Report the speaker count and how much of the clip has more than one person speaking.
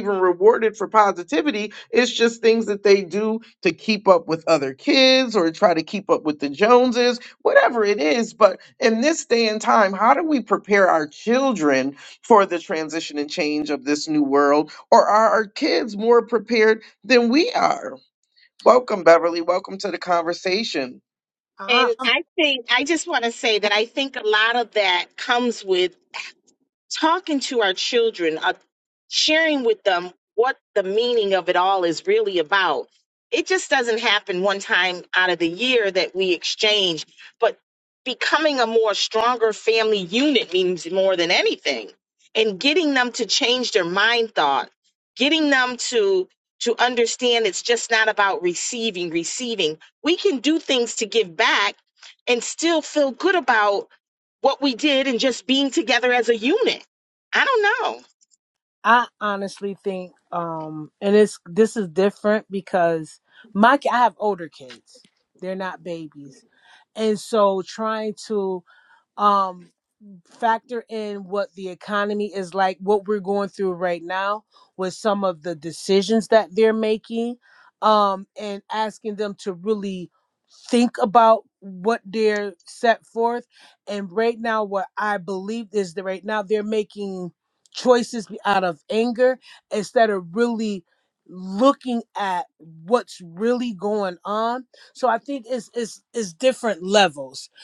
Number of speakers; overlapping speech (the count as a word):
three, under 1%